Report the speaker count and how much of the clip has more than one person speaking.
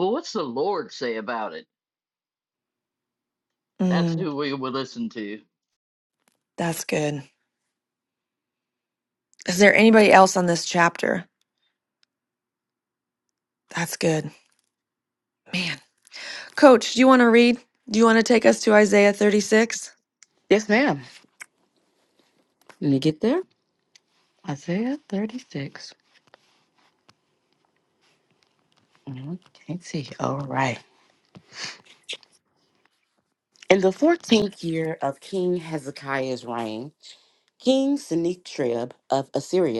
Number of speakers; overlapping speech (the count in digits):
3, about 1%